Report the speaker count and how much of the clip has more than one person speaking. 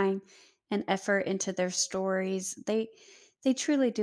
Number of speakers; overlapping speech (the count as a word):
one, no overlap